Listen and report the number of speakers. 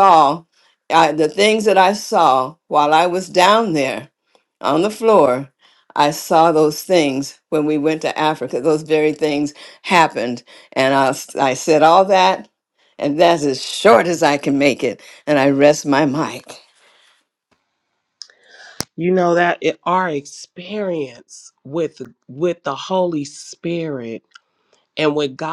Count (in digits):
2